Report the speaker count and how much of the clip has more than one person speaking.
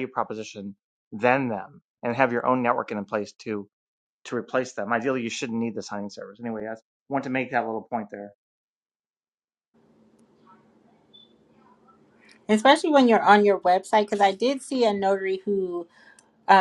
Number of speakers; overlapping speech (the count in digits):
2, no overlap